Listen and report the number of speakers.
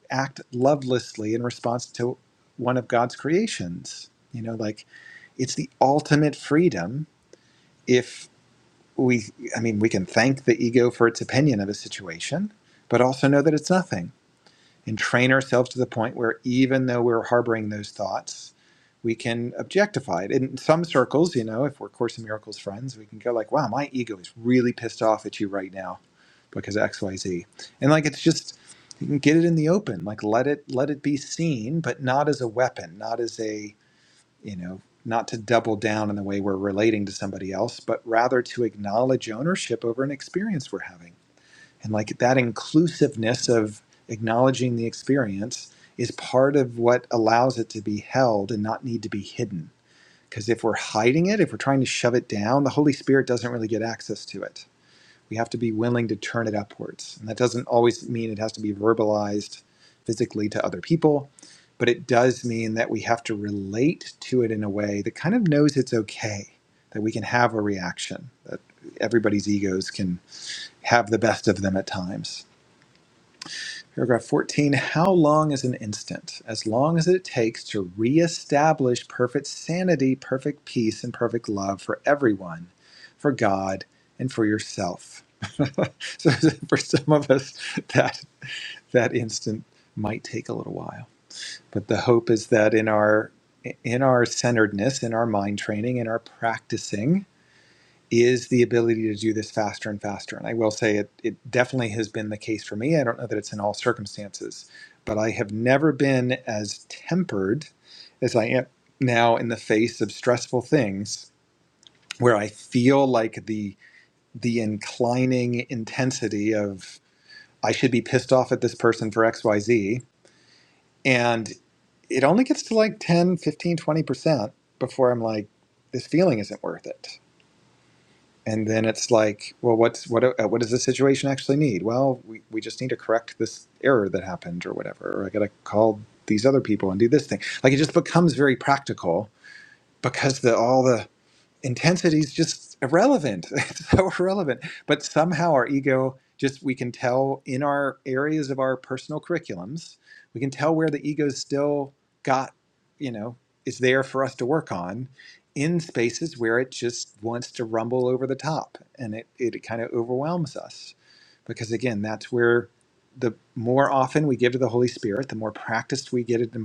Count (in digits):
1